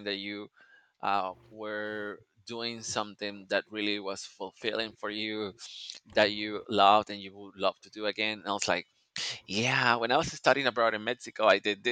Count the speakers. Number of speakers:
one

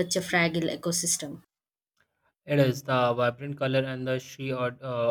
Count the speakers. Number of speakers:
two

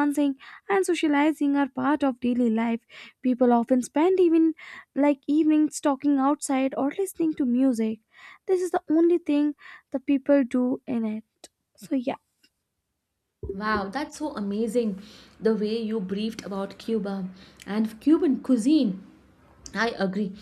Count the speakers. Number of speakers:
two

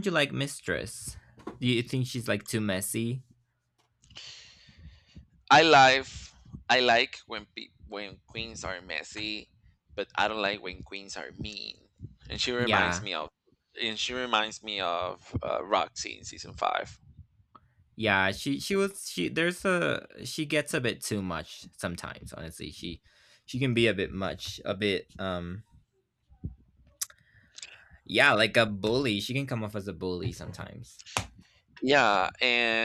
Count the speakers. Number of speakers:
two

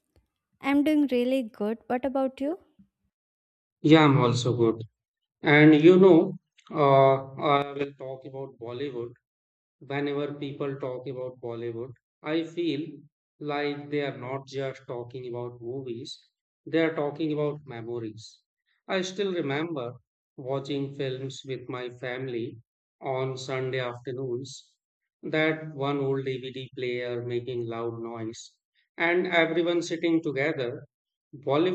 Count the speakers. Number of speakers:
two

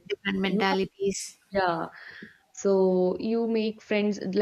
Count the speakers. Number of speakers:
two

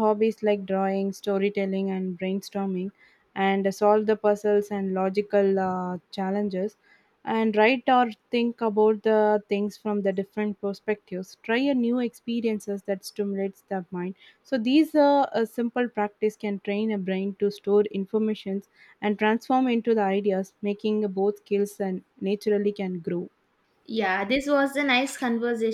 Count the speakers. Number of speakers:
two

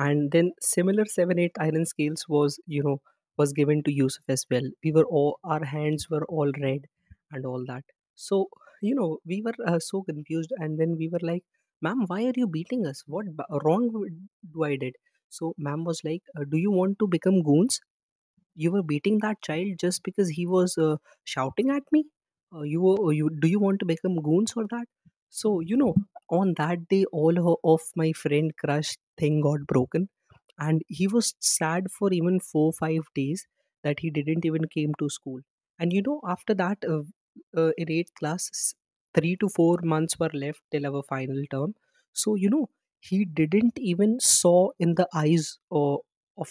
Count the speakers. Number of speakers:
one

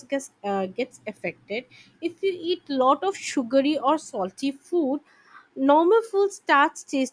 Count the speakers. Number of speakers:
one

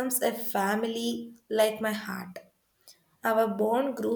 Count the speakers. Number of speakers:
one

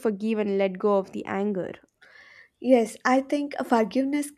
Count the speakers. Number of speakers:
two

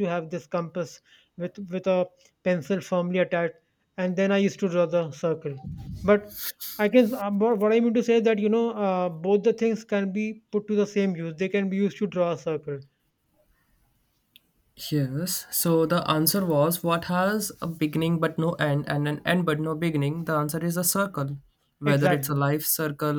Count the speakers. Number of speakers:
two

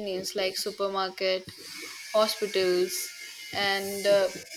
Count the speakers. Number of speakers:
one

